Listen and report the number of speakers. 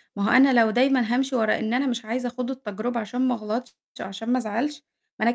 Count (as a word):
one